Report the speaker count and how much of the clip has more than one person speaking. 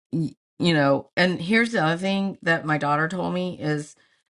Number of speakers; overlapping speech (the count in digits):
1, no overlap